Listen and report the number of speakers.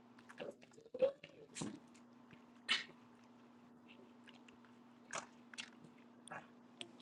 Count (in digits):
0